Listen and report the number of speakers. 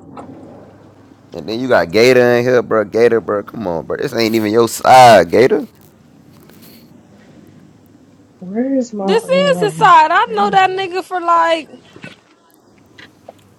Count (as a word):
three